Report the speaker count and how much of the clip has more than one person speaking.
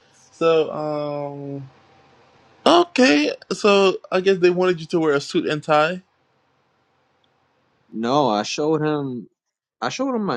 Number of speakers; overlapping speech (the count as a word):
two, no overlap